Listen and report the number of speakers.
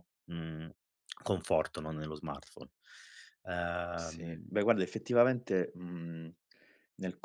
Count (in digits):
2